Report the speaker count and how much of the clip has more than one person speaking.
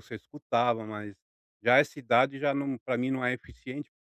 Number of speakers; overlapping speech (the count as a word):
one, no overlap